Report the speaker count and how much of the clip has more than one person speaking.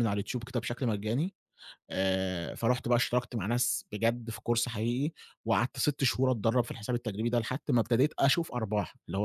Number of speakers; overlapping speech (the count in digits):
1, no overlap